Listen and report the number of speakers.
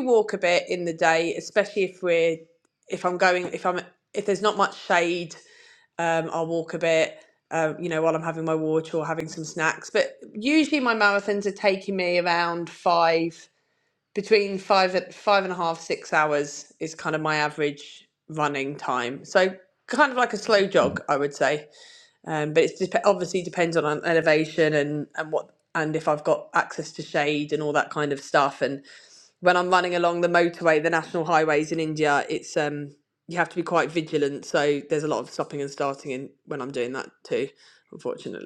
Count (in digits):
1